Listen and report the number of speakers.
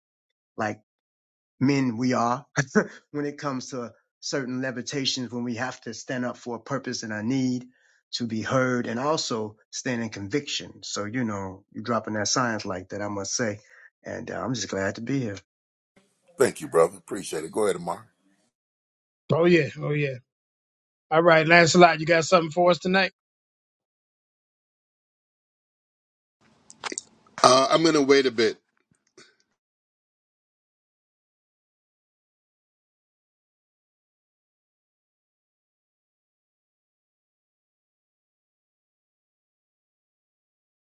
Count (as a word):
four